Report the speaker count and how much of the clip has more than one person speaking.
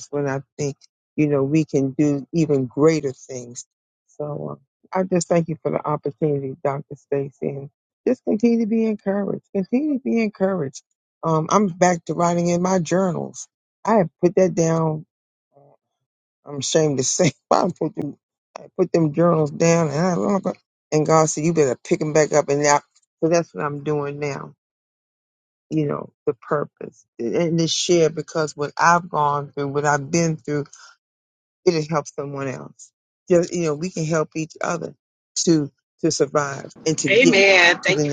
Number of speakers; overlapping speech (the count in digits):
2, about 2%